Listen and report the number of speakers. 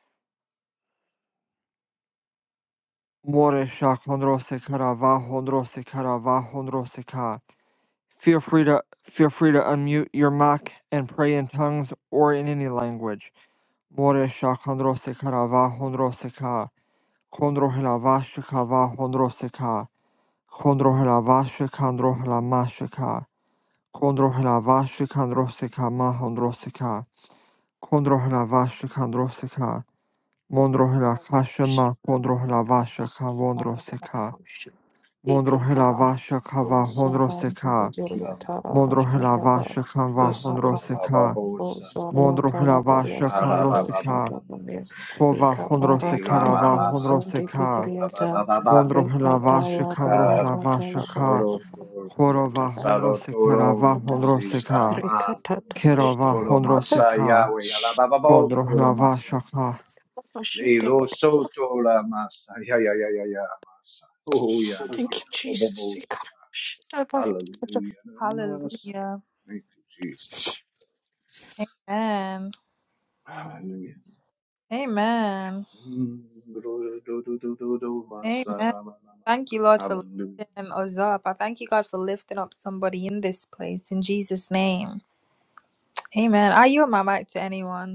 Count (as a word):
four